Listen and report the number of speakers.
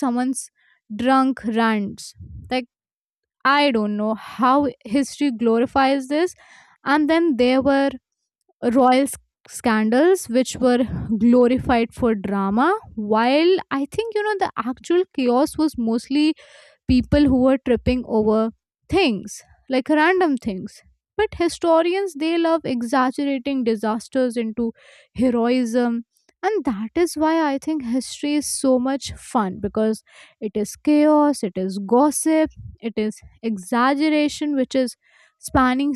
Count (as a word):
one